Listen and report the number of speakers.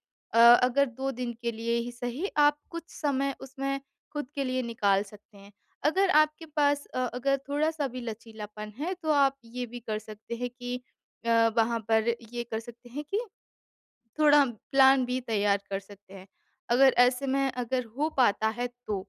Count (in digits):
1